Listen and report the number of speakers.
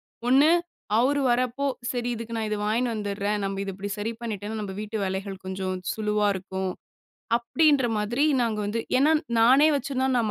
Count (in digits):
1